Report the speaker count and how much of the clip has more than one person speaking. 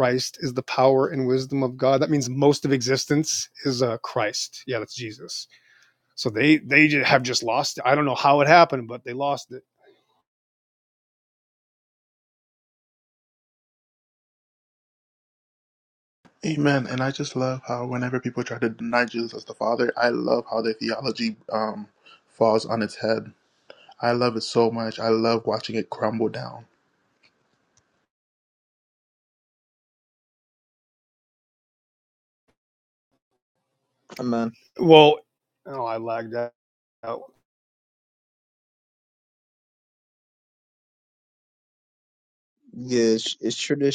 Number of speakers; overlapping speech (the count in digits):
3, no overlap